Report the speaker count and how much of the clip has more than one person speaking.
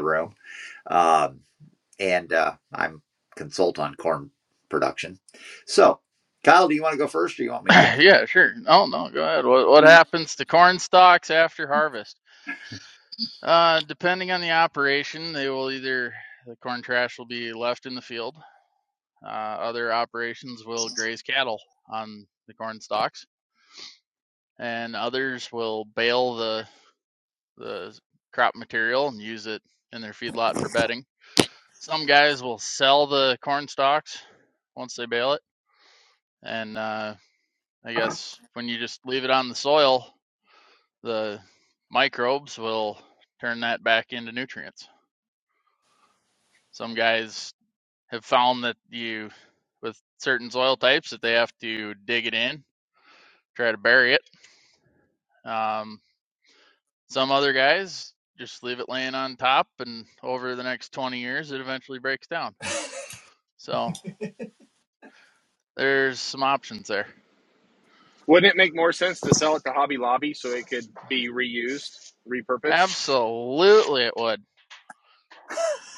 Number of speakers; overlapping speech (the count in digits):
3, under 1%